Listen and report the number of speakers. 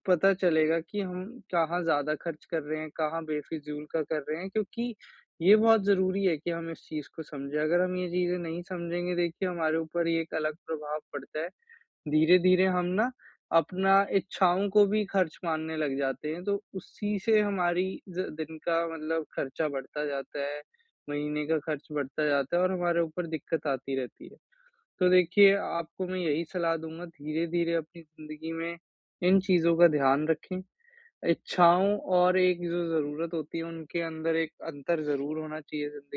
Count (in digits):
1